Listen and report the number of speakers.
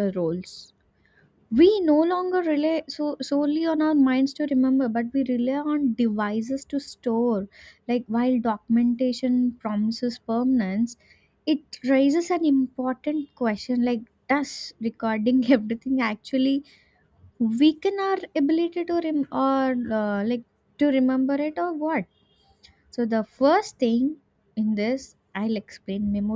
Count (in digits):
1